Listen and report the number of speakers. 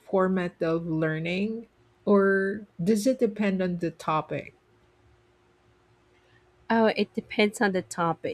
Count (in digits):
2